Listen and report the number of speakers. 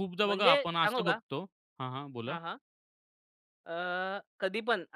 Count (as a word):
two